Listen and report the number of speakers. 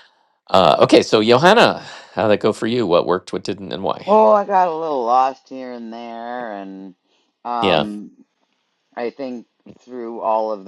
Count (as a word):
two